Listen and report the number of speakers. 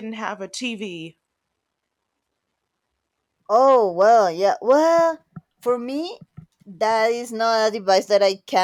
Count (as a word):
two